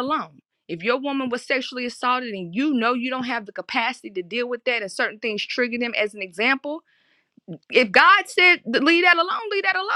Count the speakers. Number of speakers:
one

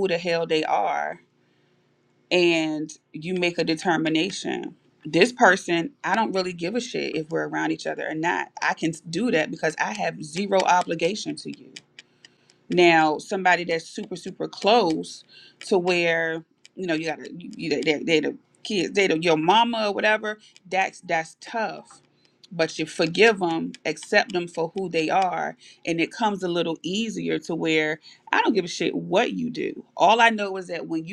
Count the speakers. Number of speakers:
one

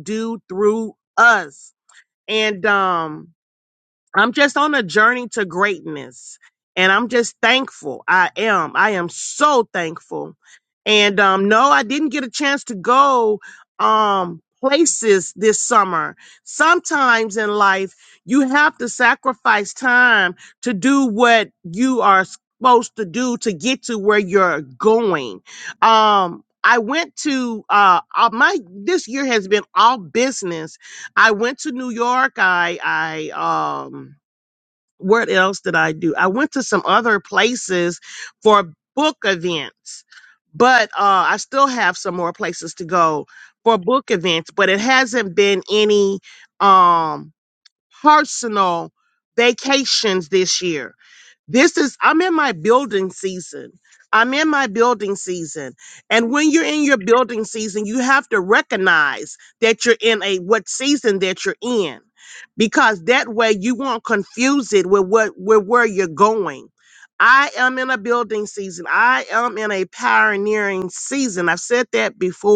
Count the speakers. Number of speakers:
one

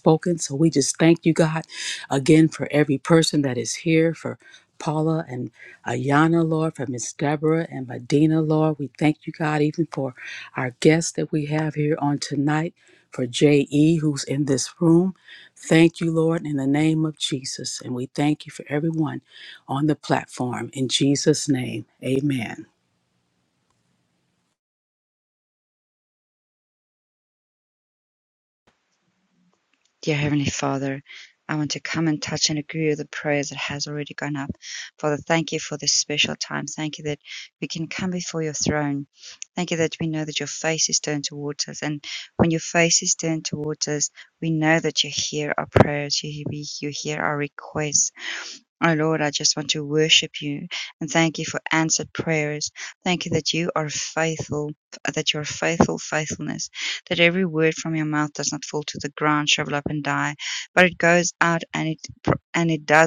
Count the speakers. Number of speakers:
two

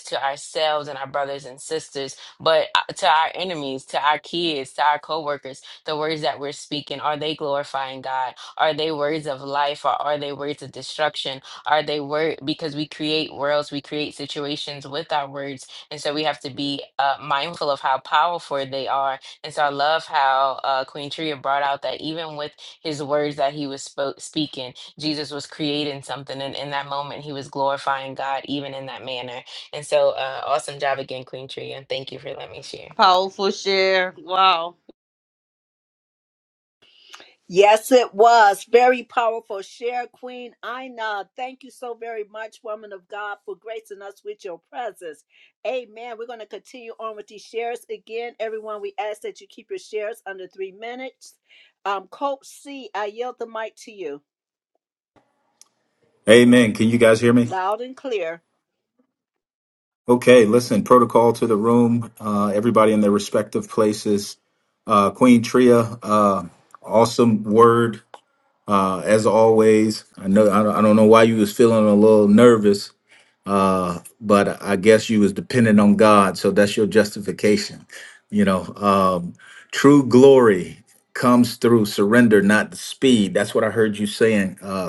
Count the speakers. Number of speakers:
four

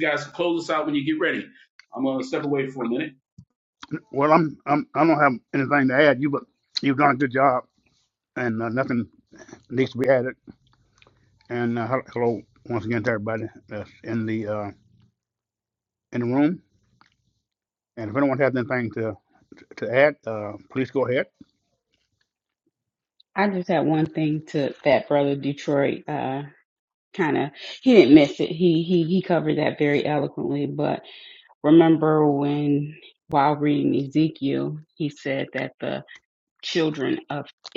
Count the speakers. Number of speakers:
three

